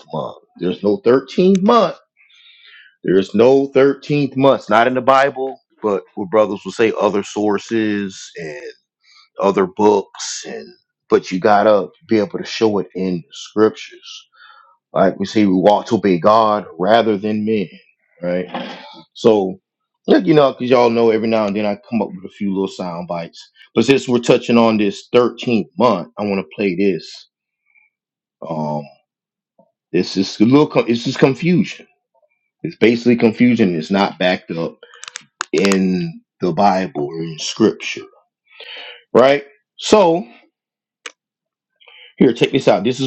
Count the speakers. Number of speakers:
1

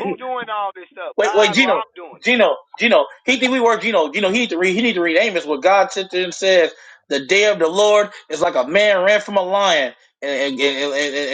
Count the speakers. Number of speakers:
2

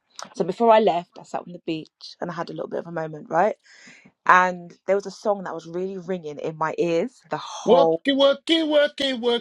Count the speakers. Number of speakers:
2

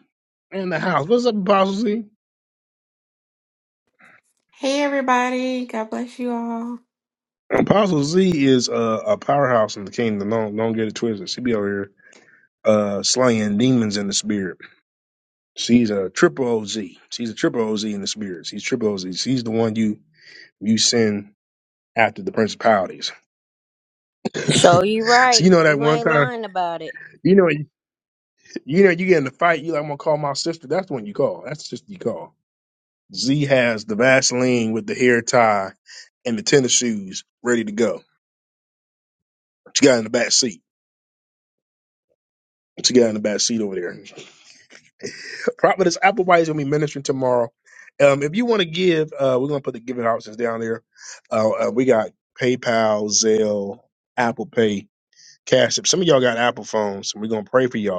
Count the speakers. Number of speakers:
3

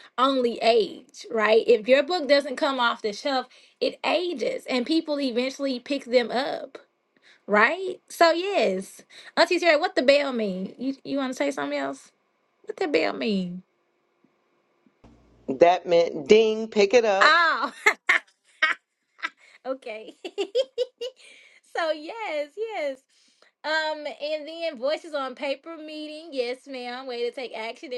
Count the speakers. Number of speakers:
2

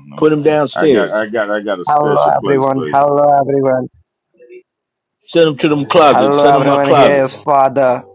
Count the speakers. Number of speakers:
3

